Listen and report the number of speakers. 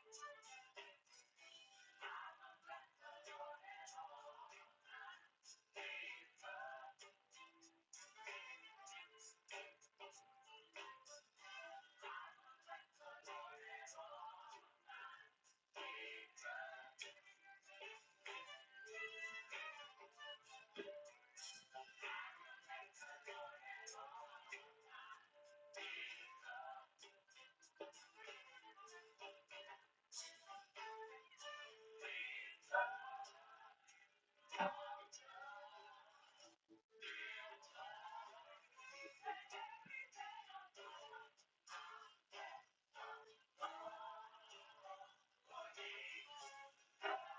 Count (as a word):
zero